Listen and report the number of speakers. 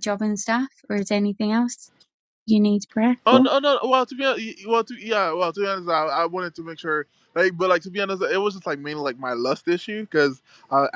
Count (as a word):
two